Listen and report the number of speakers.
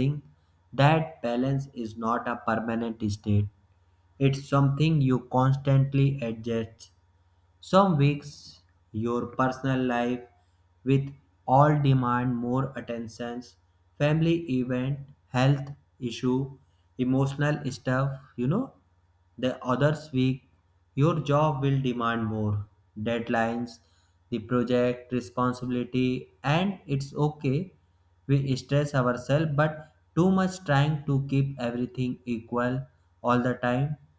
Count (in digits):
1